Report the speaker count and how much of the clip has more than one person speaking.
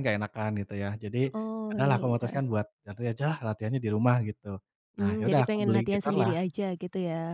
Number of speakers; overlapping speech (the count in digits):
2, about 28%